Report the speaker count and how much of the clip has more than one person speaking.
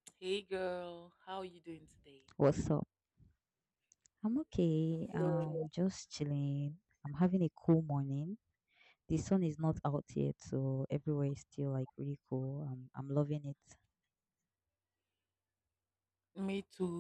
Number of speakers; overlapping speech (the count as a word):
two, about 2%